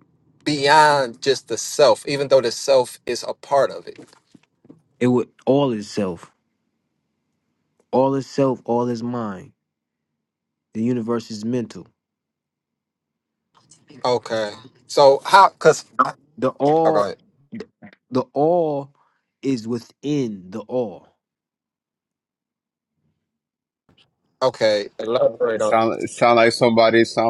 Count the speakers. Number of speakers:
three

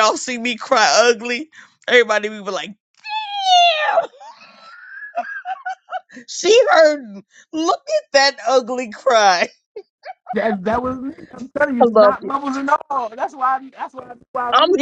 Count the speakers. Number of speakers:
two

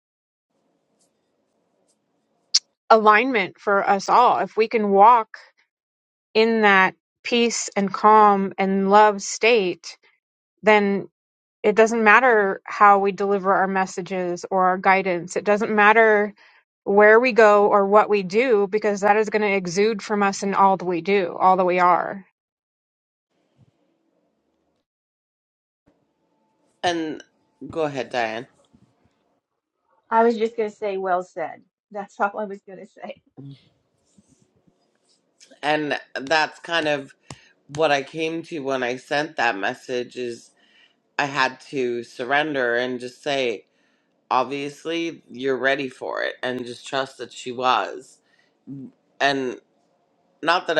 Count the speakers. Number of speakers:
three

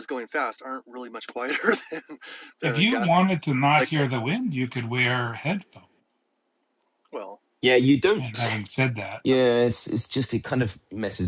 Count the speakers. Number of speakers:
three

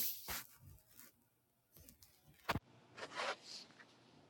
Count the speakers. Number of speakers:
zero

